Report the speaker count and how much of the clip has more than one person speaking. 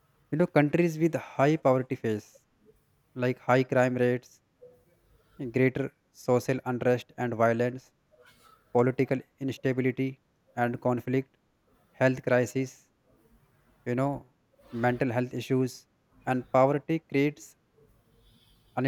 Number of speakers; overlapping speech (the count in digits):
1, no overlap